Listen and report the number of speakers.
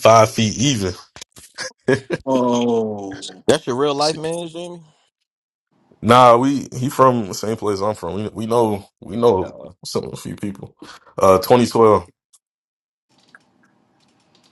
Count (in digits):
3